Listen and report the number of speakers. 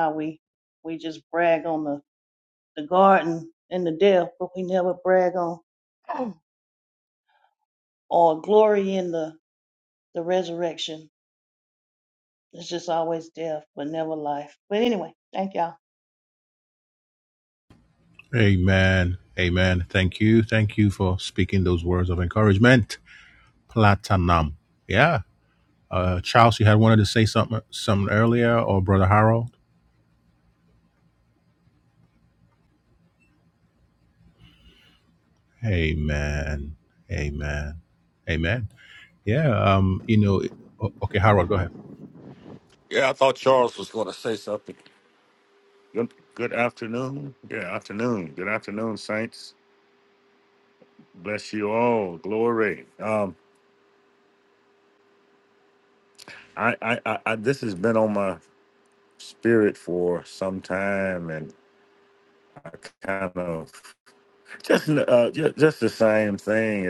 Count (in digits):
3